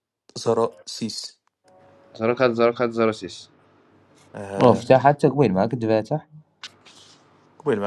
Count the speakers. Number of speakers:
three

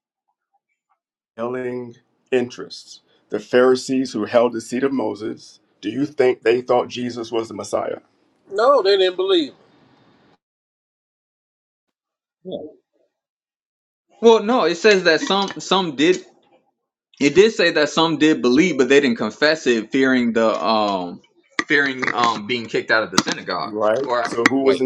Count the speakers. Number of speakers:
three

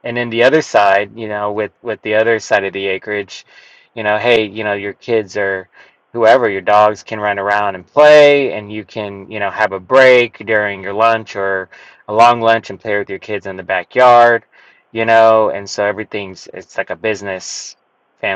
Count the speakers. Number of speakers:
one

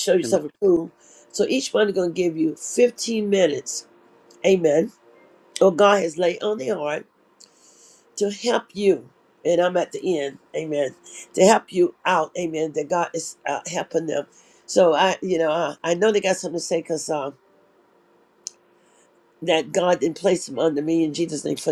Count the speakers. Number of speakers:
one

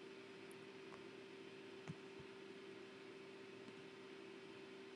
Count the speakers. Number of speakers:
zero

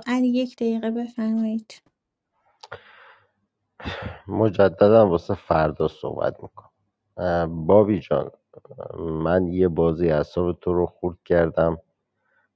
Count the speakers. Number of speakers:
two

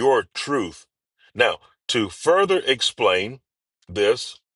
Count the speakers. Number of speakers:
one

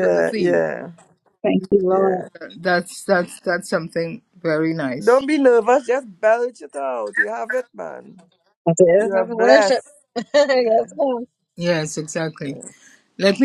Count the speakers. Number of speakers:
three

